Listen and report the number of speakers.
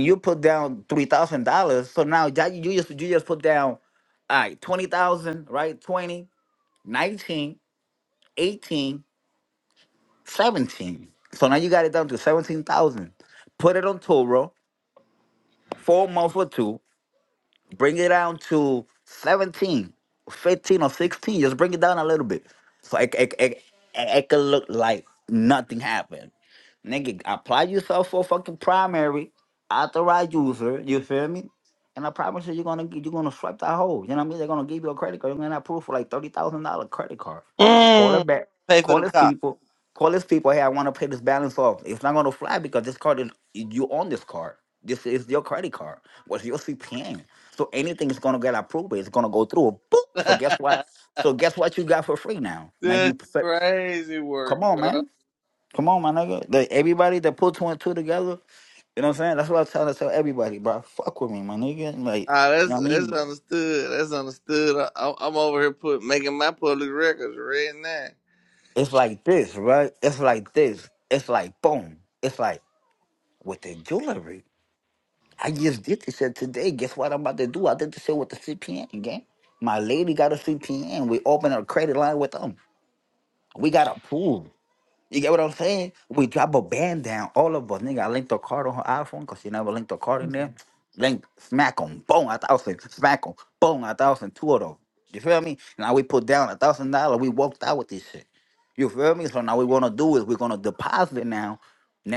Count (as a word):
two